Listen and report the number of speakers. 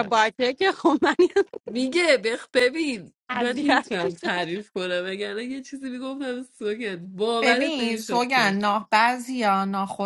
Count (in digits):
3